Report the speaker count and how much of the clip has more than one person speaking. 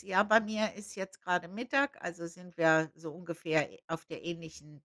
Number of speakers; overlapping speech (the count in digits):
1, no overlap